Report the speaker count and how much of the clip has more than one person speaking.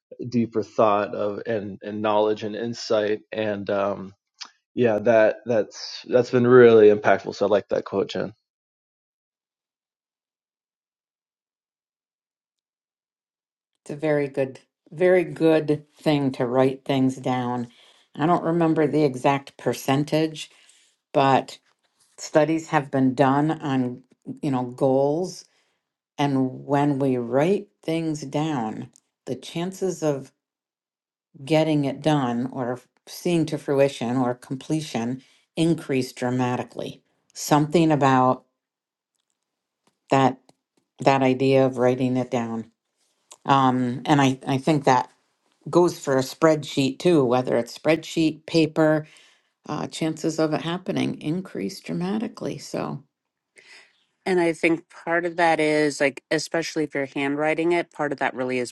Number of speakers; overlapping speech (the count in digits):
3, no overlap